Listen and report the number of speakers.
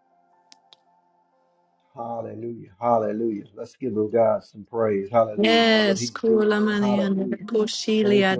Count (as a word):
two